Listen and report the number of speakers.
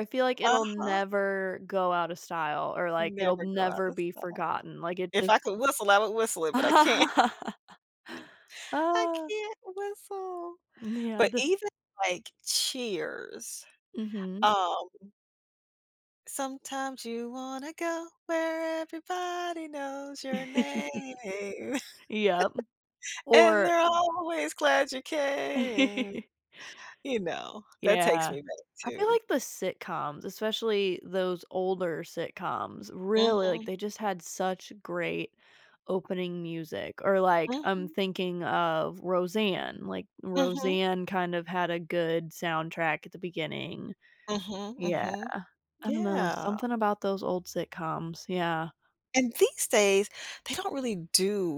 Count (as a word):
two